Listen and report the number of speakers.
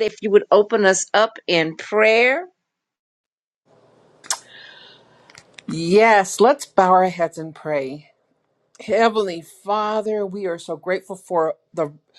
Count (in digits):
2